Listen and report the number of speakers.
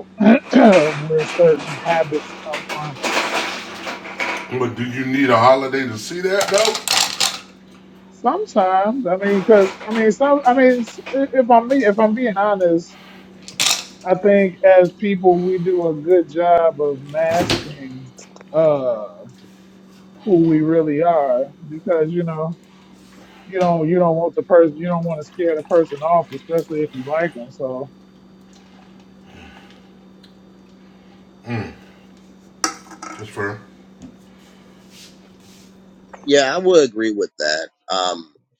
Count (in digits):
3